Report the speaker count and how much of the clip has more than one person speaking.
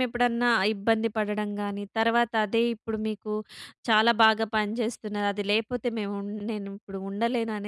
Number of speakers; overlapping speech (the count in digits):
1, no overlap